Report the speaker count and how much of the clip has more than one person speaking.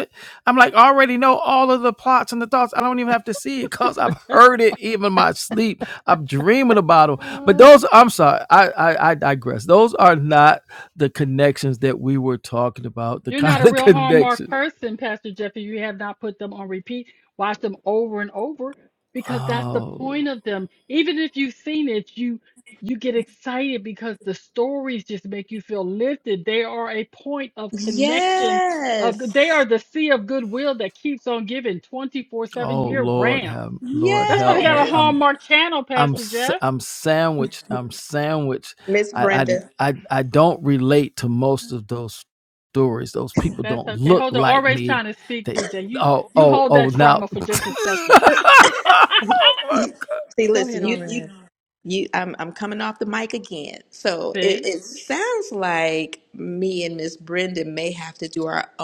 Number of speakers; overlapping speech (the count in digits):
3, about 18%